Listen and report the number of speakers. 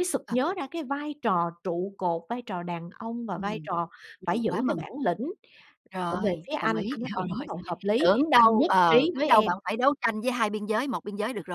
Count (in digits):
2